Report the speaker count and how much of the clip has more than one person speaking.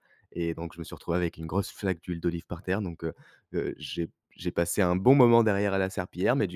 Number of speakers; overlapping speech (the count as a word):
one, no overlap